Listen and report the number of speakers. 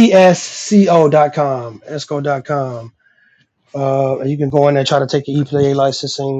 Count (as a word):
one